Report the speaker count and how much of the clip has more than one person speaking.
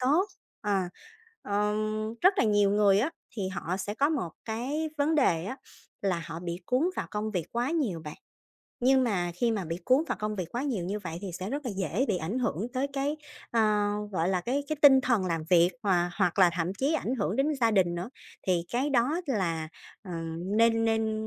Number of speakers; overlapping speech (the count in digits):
1, no overlap